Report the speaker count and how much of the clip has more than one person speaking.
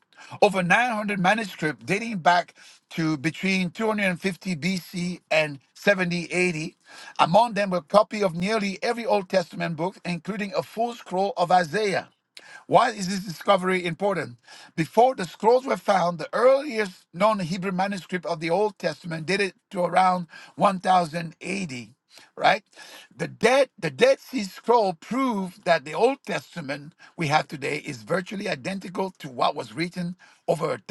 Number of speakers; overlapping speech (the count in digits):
1, no overlap